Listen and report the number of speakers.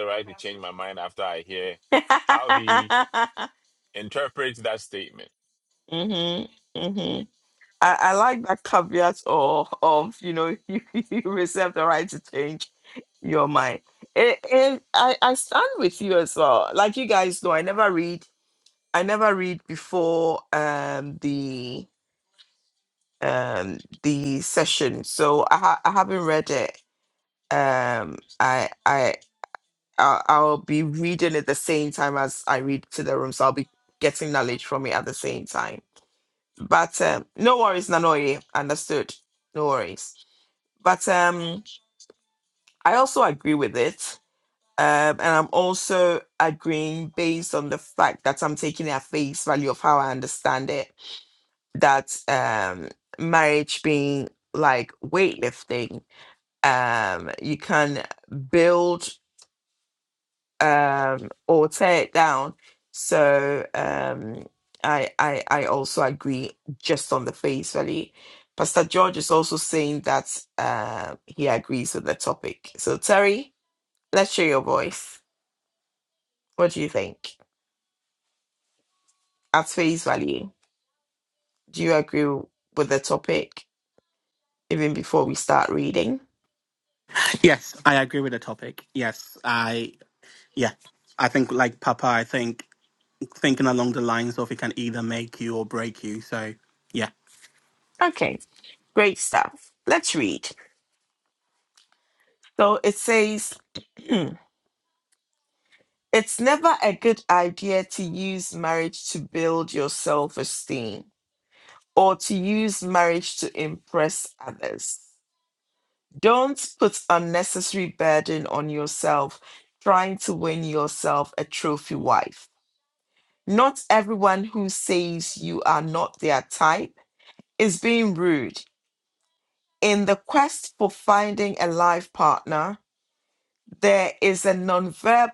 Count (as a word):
three